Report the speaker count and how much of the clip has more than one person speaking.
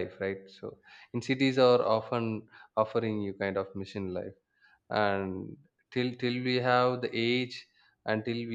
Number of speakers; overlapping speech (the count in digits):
1, no overlap